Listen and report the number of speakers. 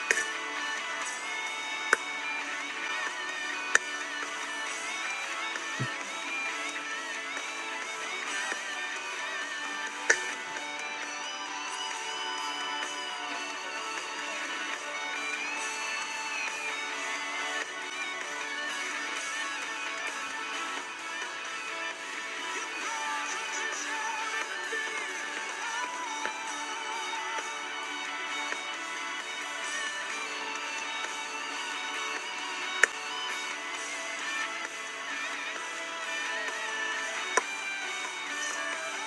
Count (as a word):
zero